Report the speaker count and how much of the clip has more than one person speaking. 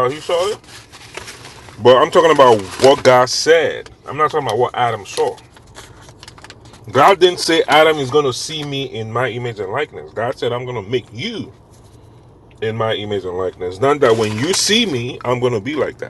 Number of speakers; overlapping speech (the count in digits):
1, no overlap